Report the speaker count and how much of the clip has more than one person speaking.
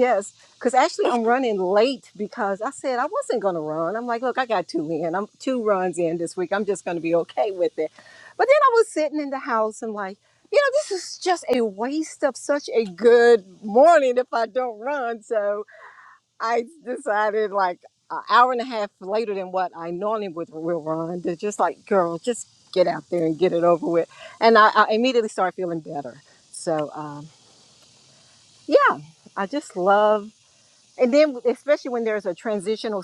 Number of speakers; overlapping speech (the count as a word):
one, no overlap